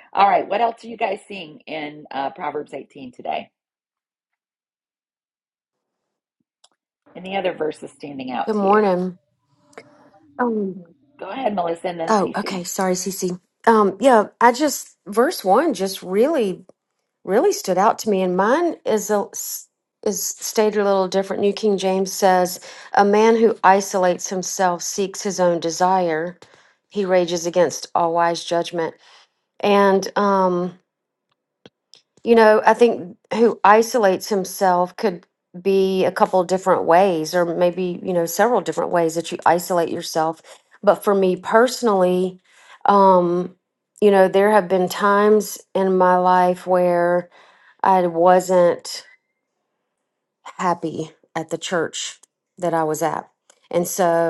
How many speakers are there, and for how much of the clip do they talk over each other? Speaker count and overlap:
2, about 2%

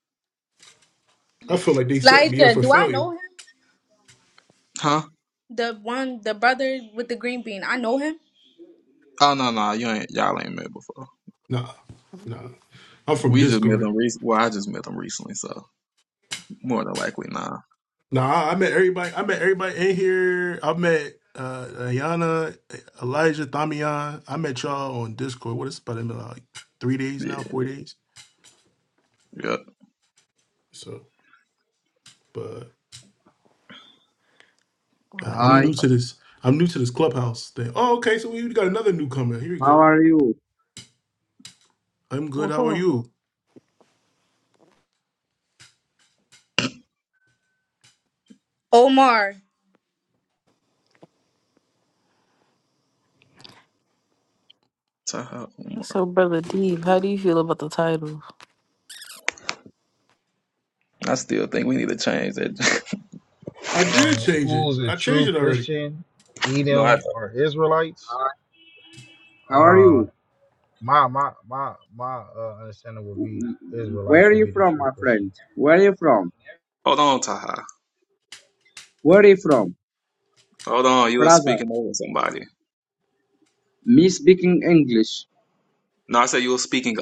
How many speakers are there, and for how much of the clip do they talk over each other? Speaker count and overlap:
6, about 9%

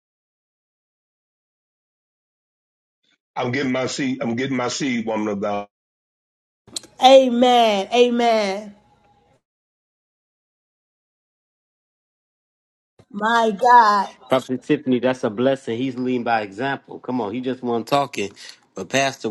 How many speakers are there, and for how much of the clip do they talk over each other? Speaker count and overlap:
3, no overlap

